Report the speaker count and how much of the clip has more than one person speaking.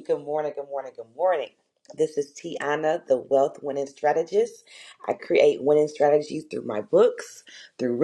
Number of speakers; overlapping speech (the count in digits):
1, no overlap